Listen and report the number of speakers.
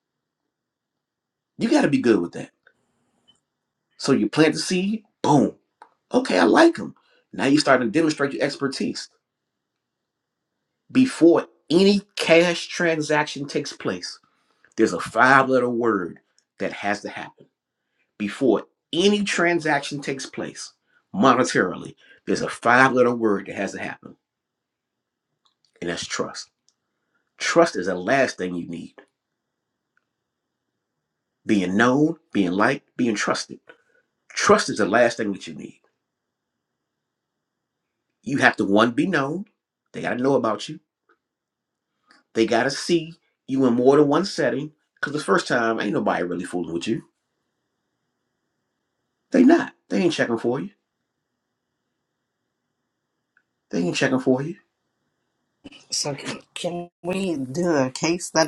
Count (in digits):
2